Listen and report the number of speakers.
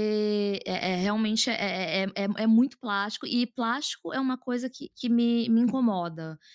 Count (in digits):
1